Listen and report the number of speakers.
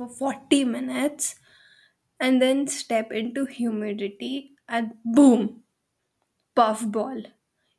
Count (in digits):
1